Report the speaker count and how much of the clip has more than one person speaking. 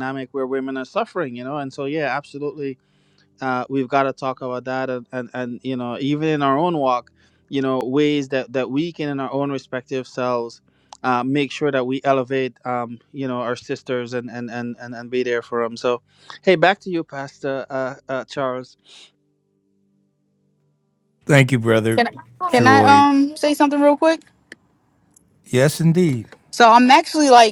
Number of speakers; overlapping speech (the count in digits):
3, about 2%